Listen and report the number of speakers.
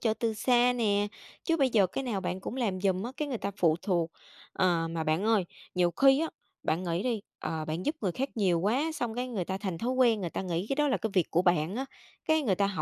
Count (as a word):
one